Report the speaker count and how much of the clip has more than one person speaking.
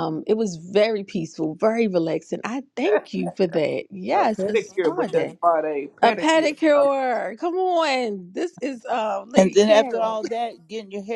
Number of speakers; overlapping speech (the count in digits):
3, about 27%